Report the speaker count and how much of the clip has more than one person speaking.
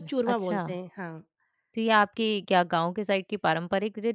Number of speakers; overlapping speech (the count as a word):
two, about 18%